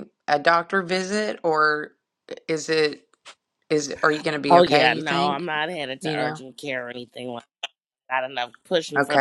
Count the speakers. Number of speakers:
two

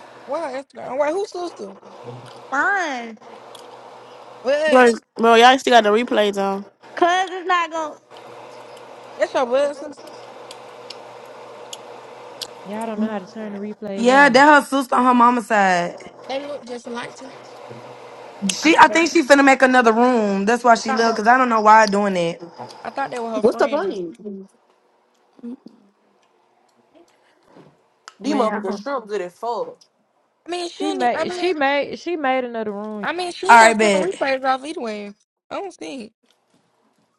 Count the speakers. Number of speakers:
six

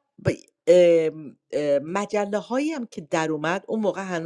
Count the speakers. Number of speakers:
one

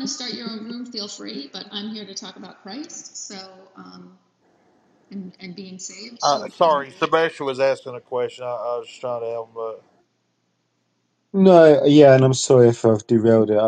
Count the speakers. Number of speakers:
three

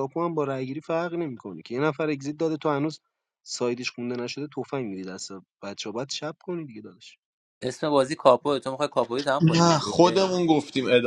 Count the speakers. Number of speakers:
three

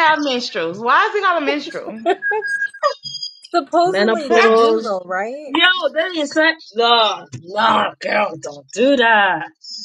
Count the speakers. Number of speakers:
three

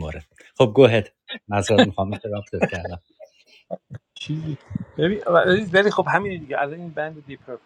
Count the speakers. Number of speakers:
two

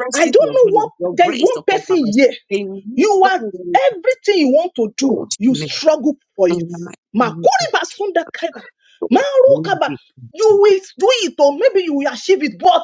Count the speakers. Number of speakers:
two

